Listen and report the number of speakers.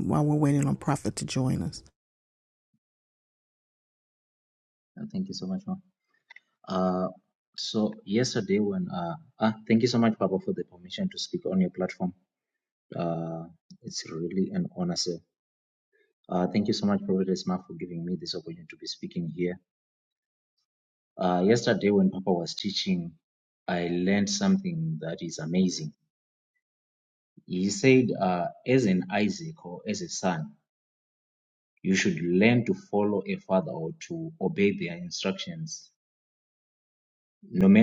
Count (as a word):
two